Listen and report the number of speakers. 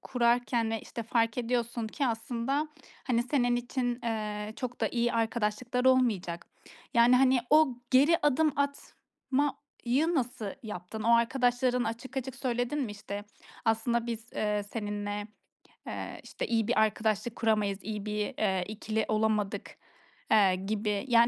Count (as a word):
one